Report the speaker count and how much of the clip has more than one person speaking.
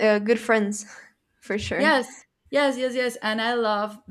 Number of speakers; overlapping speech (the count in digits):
2, about 3%